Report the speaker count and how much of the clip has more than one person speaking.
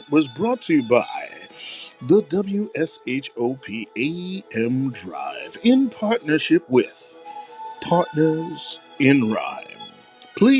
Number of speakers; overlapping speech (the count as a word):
one, no overlap